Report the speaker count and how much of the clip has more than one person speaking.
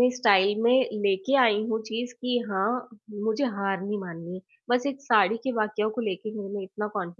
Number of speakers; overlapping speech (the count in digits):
1, no overlap